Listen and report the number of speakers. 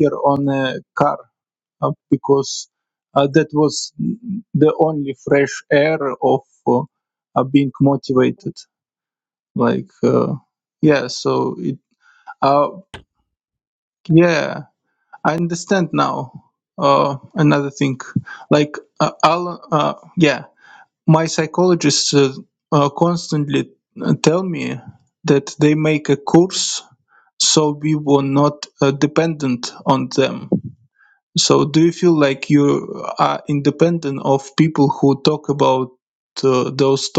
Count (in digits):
1